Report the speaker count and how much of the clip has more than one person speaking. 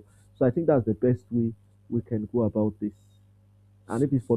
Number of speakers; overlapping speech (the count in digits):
1, no overlap